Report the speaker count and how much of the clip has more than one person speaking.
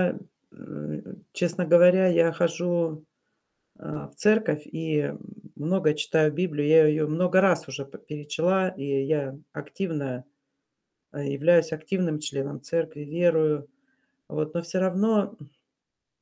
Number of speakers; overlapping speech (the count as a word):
one, no overlap